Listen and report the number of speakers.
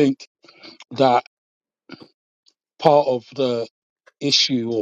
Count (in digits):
1